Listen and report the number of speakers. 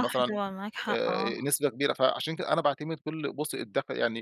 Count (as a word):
two